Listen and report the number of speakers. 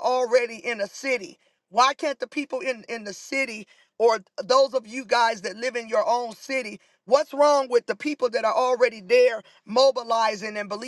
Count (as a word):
one